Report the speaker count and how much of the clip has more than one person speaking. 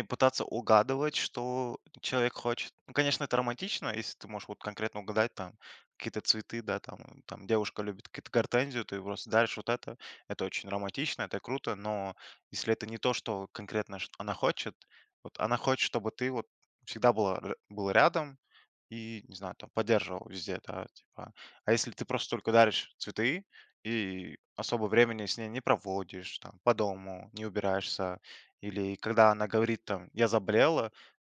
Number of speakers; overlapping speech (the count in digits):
1, no overlap